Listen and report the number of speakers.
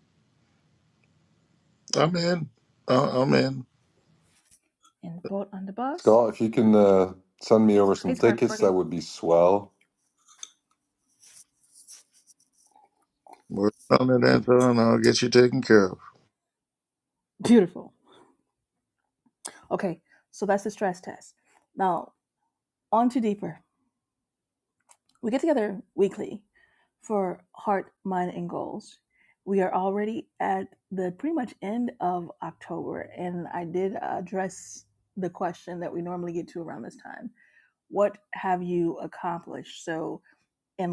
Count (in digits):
3